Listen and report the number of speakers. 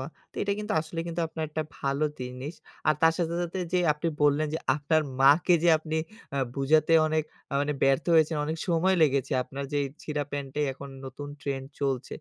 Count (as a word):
one